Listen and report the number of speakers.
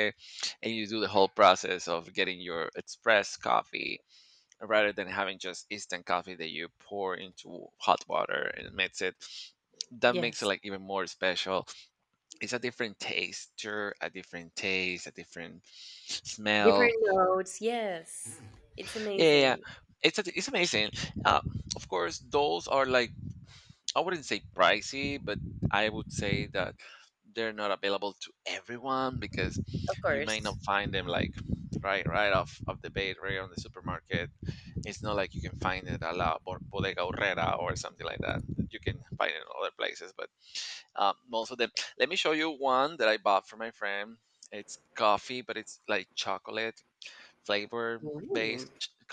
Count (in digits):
2